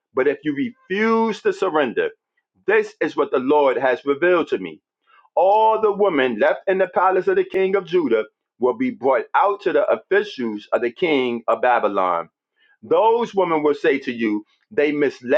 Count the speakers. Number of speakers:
one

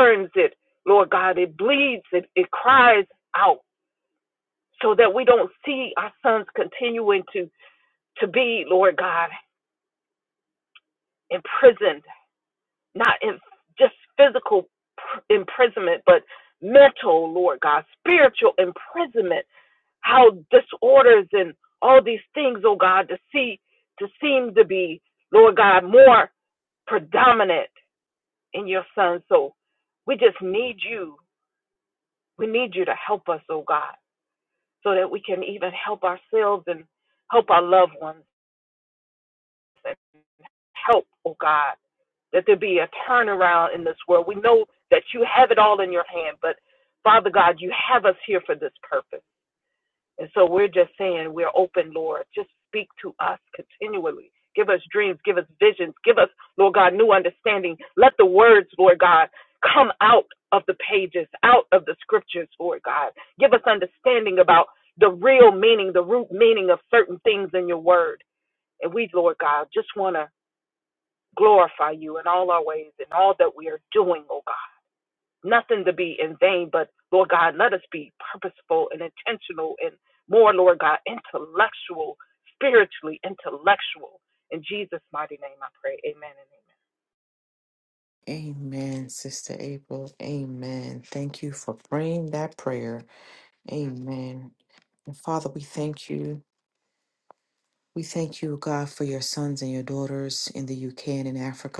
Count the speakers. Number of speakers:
two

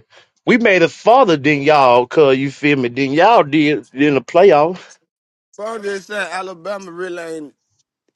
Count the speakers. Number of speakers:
two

